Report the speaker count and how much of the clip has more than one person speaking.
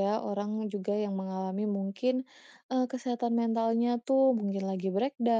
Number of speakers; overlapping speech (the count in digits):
1, no overlap